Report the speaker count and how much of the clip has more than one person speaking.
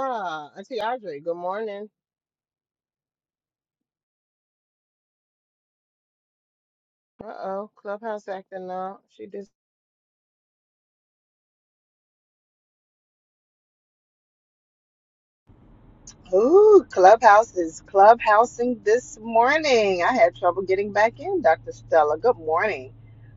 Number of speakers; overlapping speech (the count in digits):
2, no overlap